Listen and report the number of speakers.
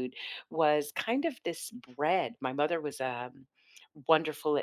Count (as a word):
one